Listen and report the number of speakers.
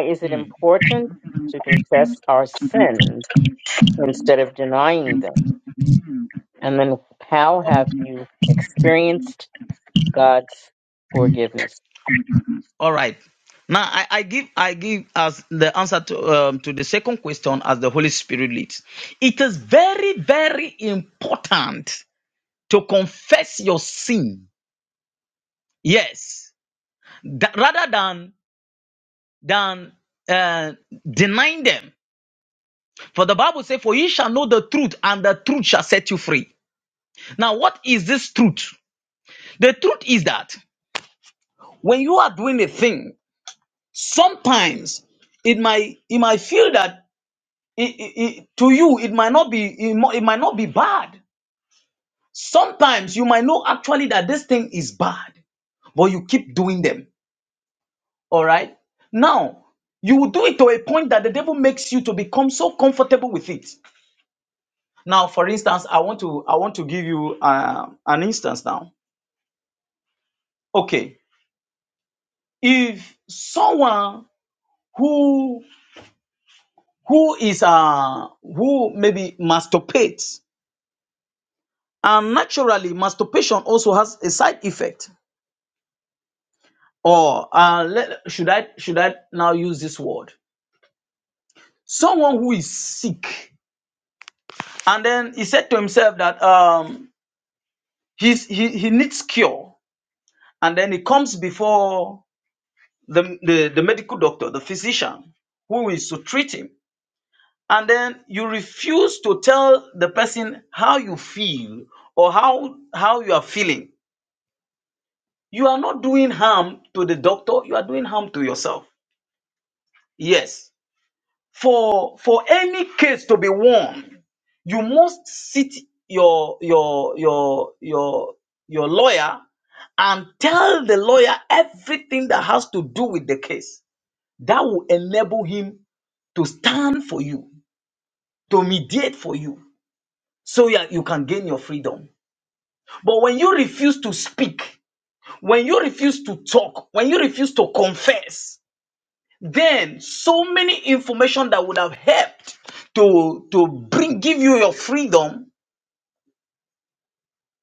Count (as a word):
two